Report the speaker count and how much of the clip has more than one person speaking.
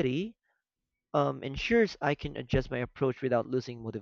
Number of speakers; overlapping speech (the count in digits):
1, no overlap